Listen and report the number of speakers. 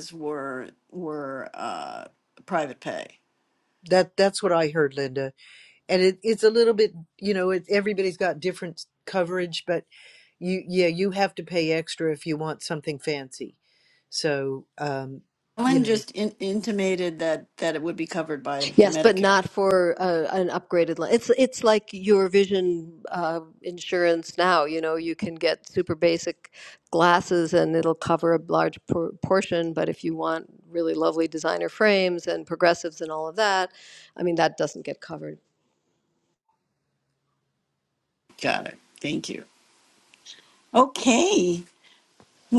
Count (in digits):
3